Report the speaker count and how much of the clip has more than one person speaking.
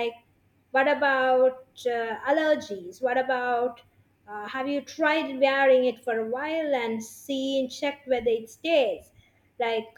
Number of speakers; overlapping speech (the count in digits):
1, no overlap